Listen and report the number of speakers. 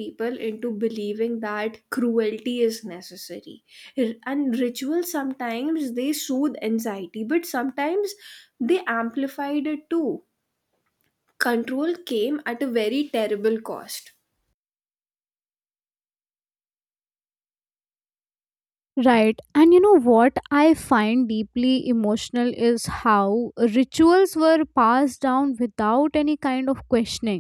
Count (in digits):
2